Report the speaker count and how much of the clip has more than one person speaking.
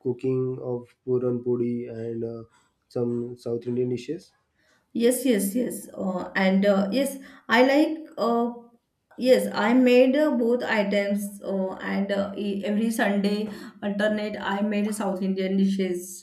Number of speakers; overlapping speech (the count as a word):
two, no overlap